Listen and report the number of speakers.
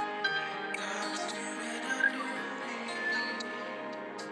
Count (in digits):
0